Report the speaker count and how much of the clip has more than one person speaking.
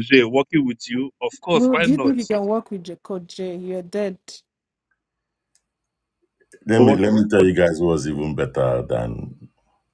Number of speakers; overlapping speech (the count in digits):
3, about 9%